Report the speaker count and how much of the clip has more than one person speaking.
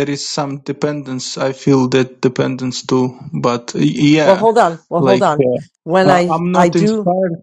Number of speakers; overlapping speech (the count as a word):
two, about 23%